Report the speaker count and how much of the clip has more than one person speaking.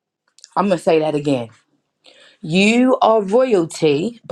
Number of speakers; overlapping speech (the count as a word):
one, no overlap